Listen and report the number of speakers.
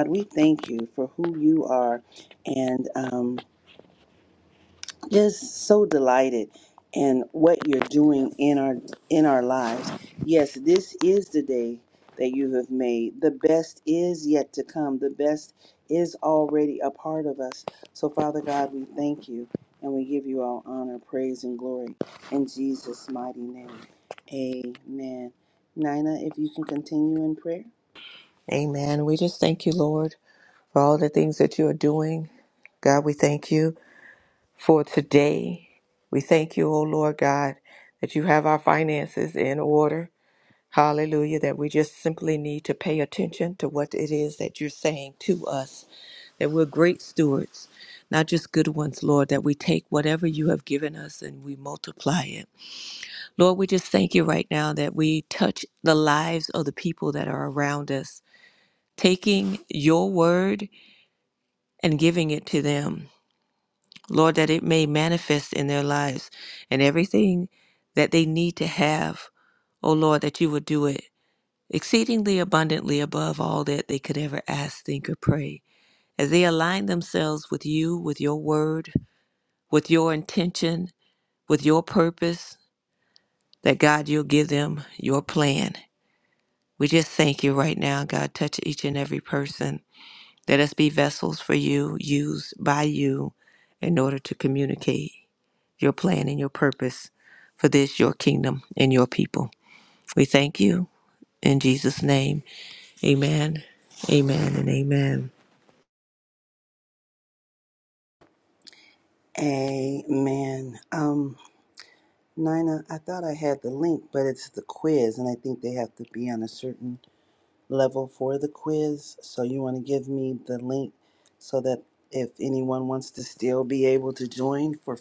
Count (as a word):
two